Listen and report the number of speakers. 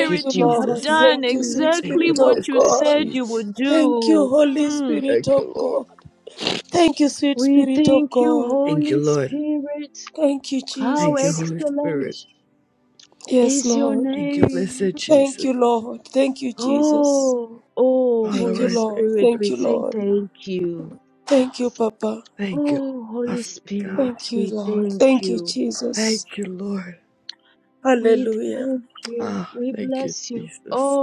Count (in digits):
3